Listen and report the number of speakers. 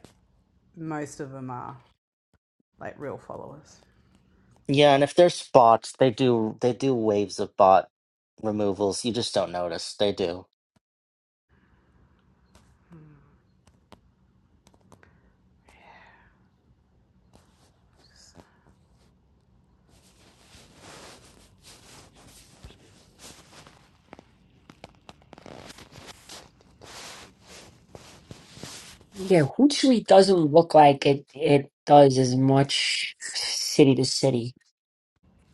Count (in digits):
3